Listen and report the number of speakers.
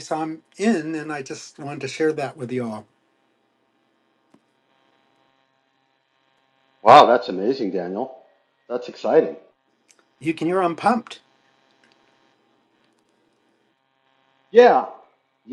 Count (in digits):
2